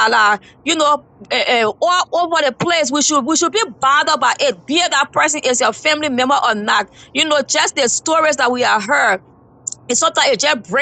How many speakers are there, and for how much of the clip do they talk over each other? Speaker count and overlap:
1, no overlap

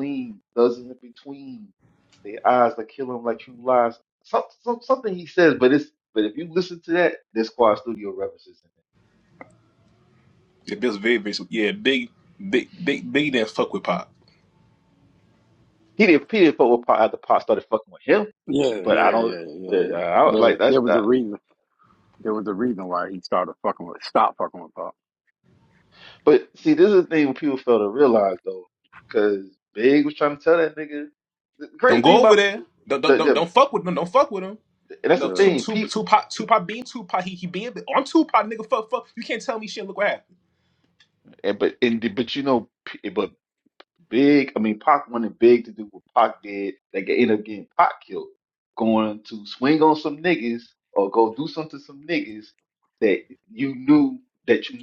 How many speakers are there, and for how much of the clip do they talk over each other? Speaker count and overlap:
3, about 6%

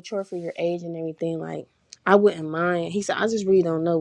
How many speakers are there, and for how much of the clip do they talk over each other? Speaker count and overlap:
1, no overlap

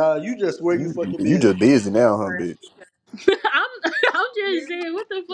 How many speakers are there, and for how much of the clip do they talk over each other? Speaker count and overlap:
3, about 16%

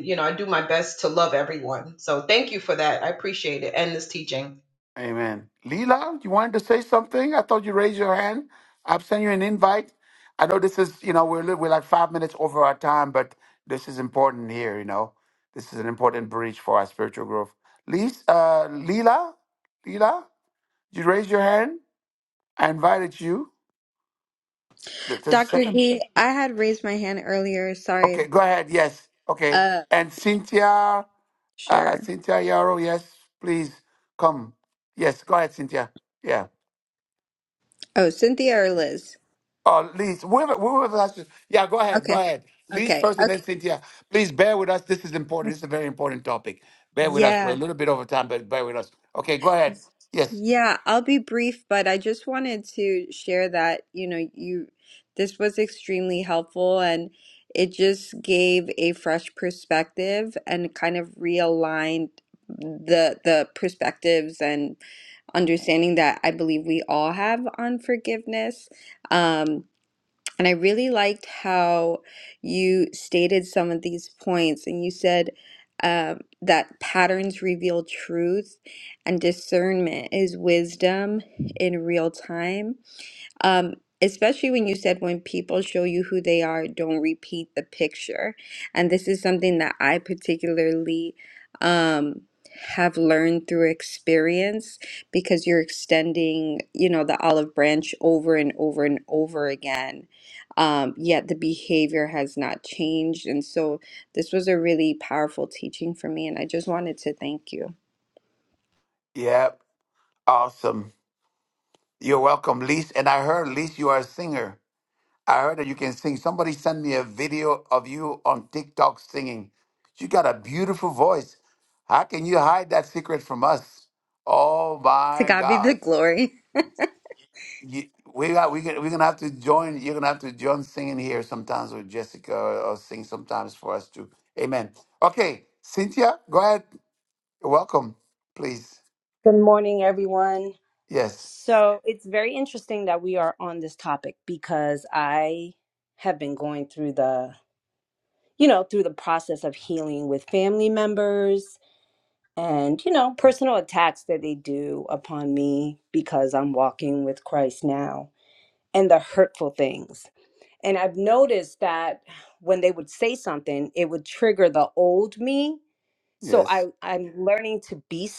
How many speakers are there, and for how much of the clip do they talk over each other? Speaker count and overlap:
4, about 2%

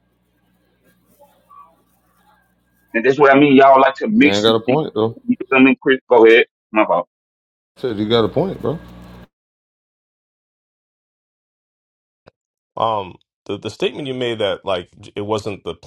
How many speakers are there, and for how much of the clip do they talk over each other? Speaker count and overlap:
3, about 4%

